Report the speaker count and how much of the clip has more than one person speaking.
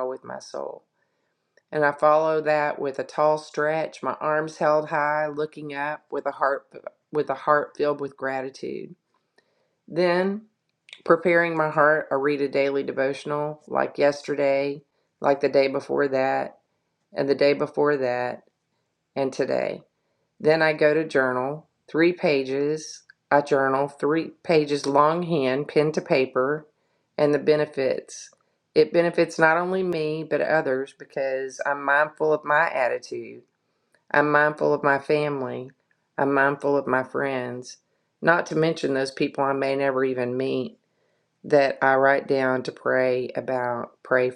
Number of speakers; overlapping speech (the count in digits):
1, no overlap